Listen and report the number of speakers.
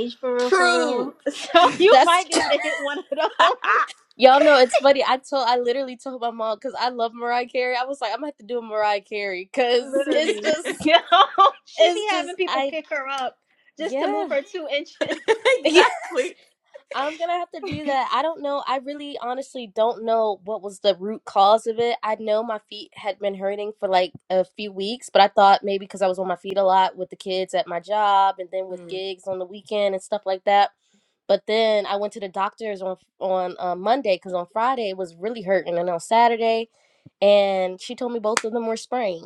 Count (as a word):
three